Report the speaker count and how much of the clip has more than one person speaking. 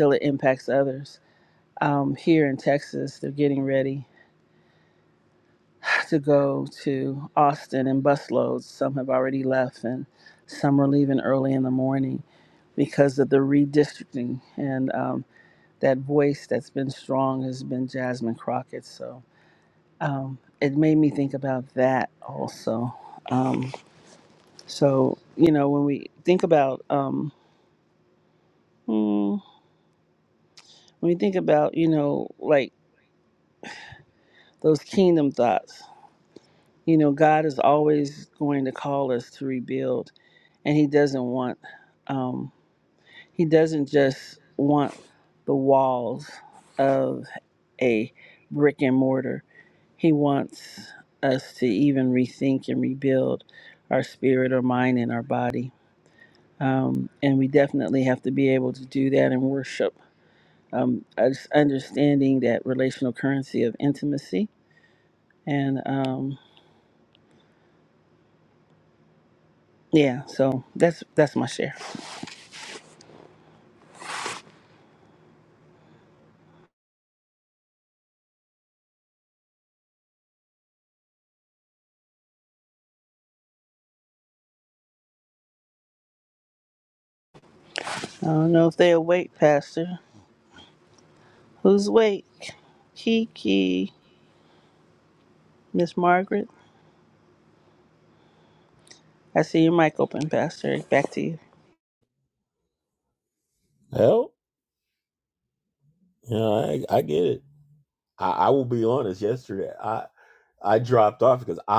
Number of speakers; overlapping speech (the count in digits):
2, no overlap